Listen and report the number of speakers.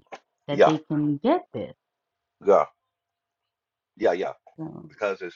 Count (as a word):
two